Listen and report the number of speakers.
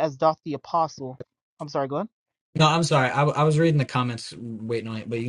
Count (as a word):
two